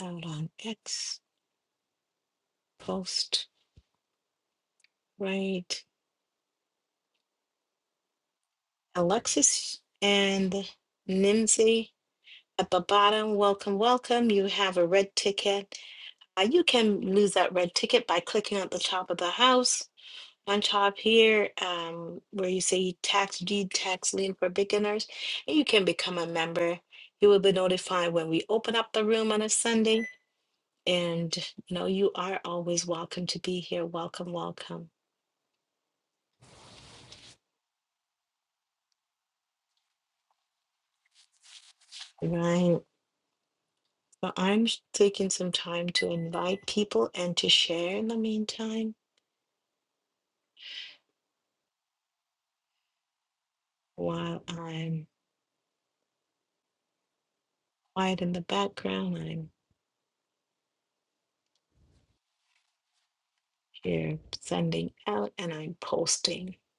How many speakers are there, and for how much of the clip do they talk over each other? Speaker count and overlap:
1, no overlap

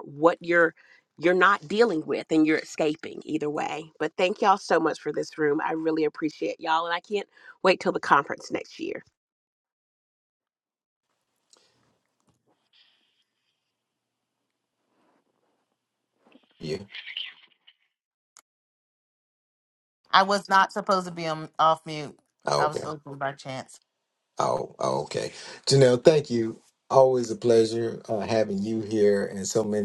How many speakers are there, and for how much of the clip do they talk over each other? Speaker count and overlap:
3, about 1%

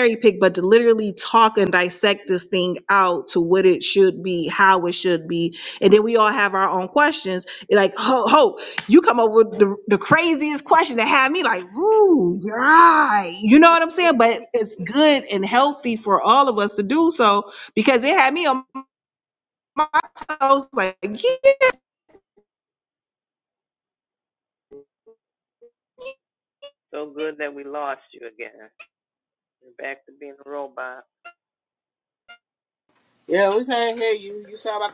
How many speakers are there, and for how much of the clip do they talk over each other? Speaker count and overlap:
3, no overlap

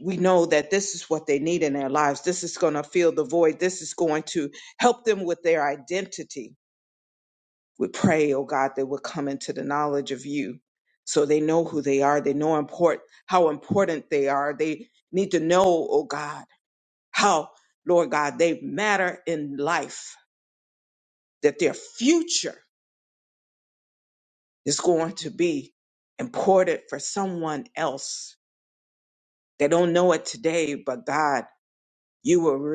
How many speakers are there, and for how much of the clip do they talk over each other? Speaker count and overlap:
1, no overlap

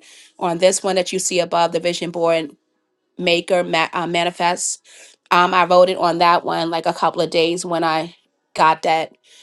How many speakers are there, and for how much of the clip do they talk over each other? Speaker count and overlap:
1, no overlap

